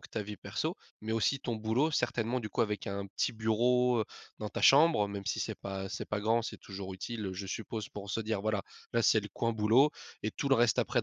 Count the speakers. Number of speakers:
one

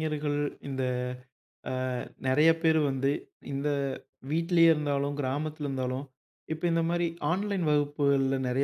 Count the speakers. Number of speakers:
one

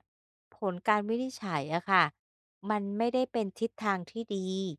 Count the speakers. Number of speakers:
one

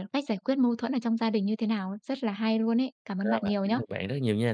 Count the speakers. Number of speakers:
two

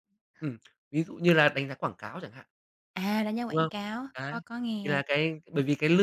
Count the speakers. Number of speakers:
two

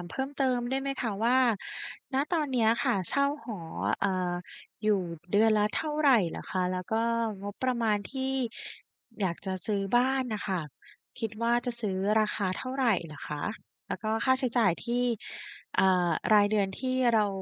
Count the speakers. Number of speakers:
one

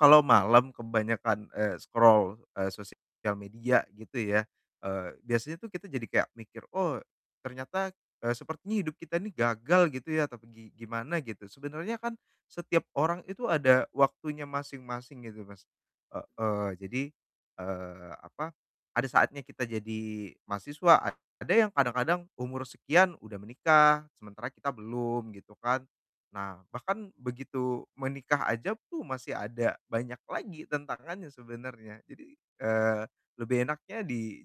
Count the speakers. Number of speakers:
one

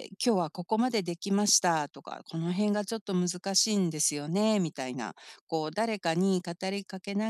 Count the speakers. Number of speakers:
one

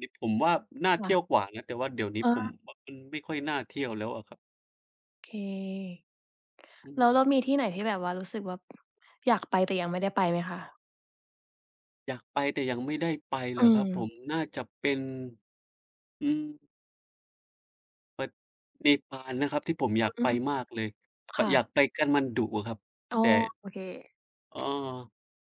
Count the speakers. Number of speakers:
two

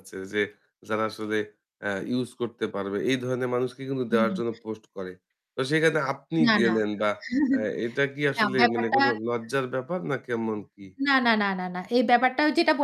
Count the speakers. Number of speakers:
two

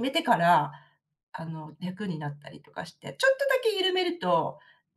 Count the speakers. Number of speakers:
one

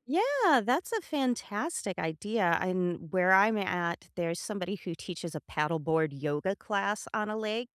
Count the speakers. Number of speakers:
one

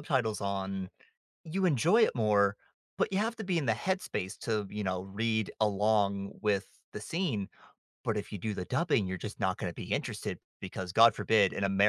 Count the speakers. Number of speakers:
one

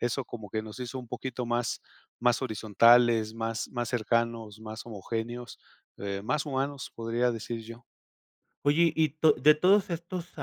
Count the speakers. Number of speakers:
two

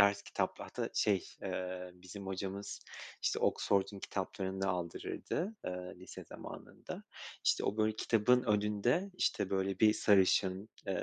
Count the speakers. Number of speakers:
one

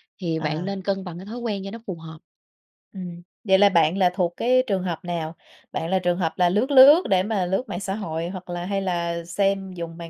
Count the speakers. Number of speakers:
two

